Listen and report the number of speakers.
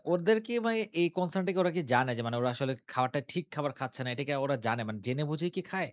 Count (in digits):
1